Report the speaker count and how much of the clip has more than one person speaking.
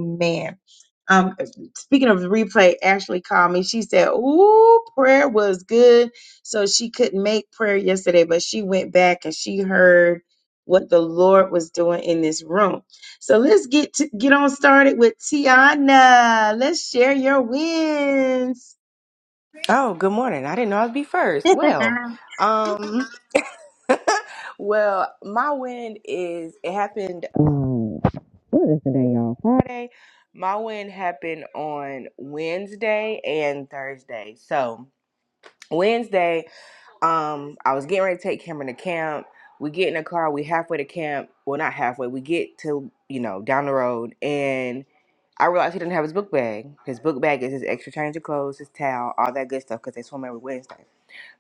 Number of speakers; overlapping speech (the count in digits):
2, about 1%